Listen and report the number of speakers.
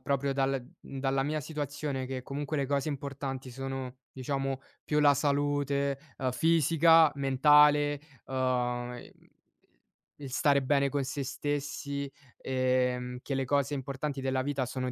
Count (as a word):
one